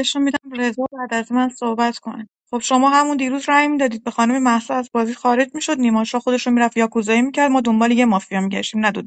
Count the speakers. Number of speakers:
one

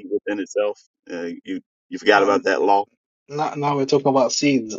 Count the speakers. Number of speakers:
two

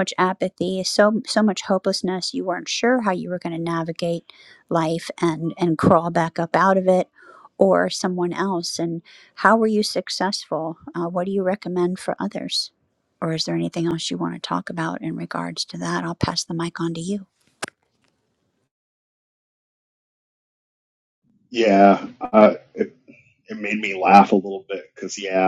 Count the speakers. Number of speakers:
two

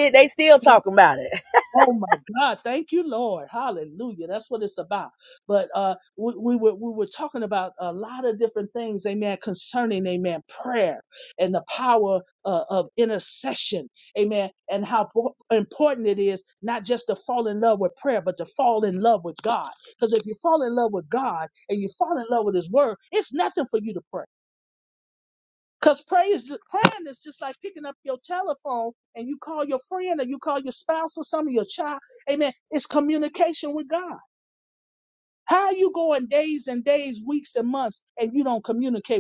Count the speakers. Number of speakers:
two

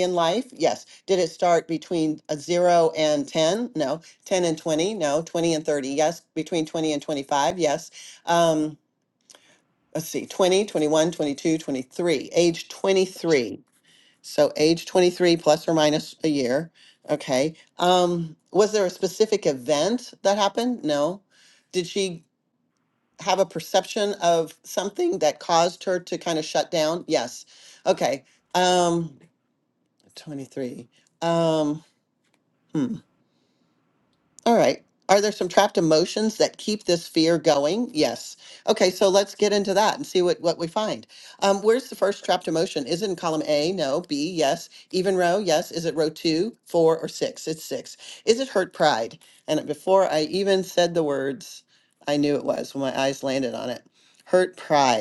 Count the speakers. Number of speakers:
one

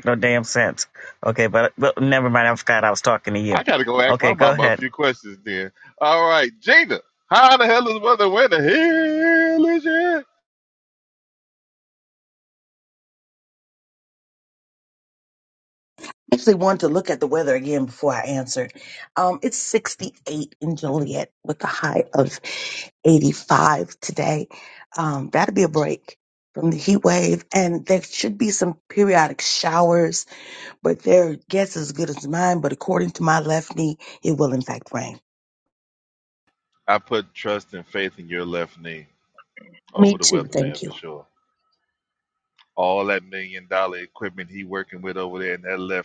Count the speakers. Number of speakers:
three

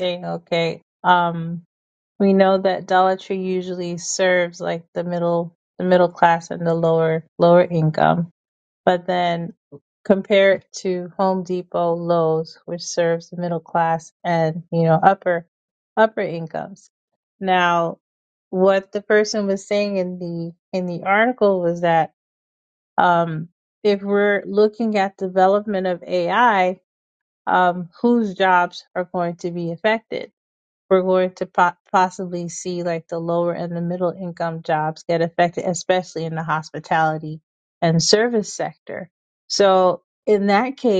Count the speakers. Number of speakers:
one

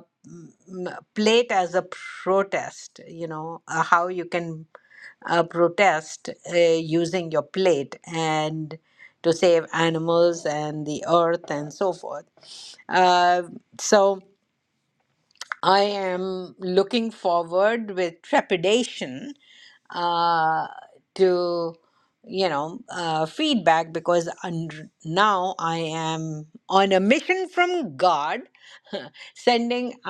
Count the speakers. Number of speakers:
one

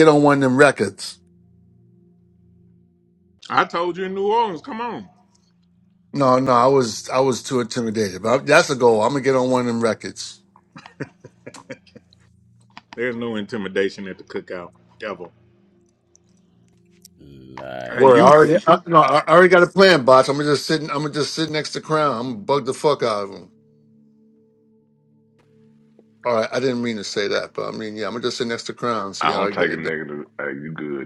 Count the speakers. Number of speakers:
four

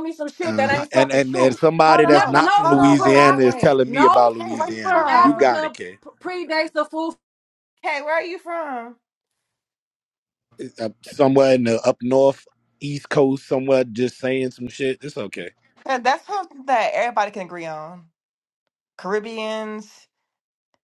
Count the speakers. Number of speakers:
three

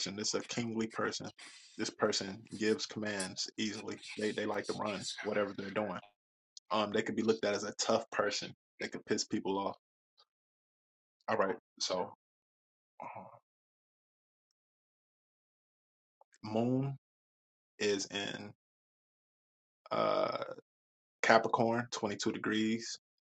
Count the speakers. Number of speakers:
one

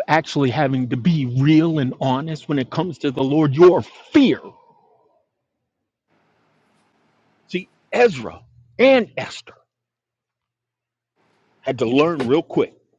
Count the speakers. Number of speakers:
one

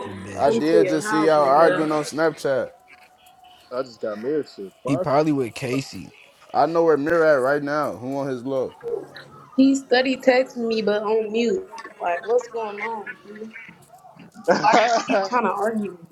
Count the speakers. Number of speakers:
four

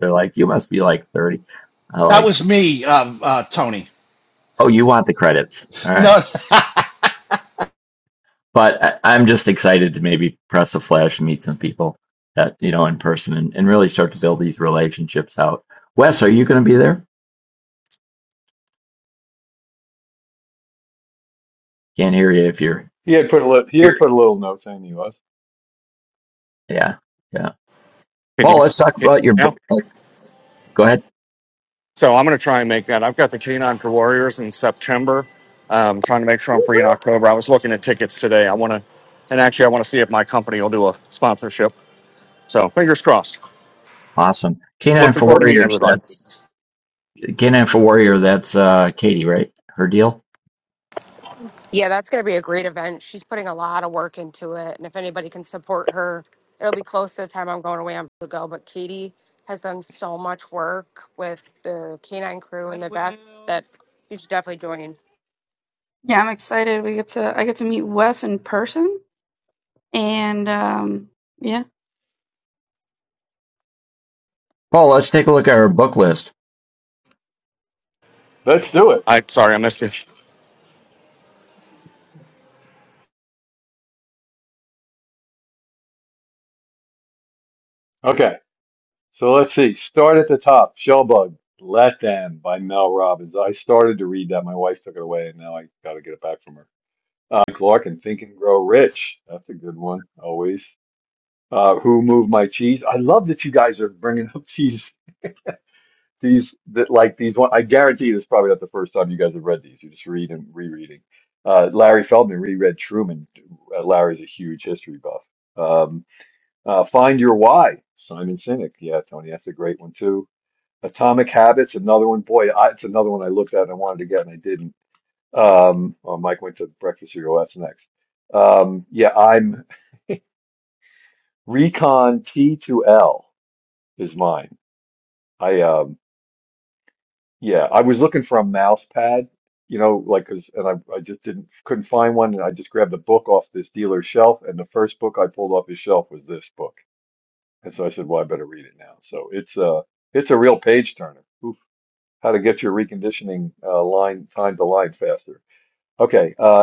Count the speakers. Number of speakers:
six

